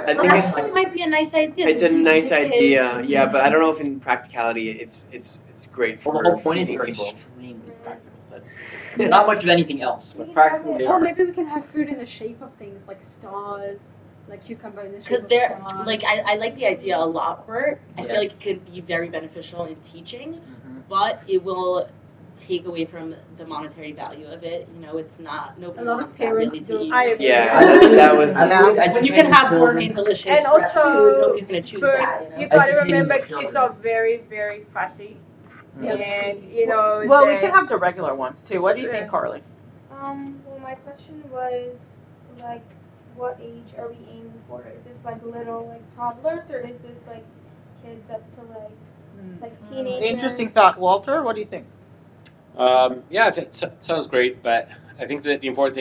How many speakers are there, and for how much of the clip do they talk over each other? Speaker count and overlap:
eight, about 32%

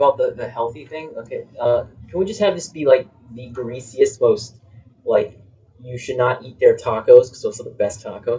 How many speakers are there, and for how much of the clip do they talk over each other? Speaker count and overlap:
one, no overlap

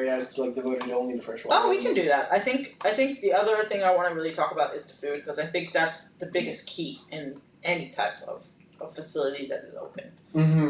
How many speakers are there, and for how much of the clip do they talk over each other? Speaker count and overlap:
two, about 5%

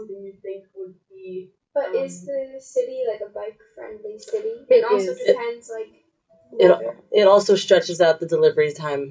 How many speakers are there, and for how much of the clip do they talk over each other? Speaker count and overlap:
three, about 14%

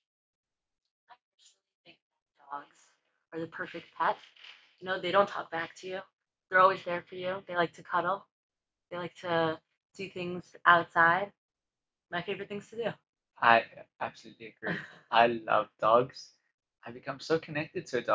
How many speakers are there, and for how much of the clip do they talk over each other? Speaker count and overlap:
two, no overlap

